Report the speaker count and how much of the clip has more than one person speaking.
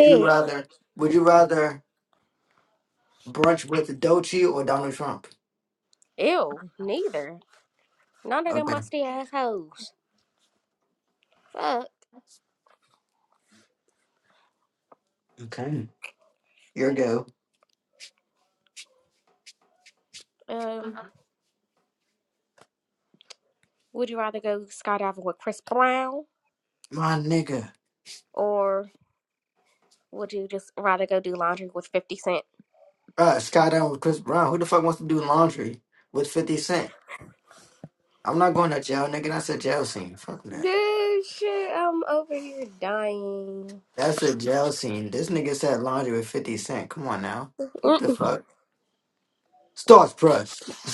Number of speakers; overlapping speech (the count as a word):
two, about 2%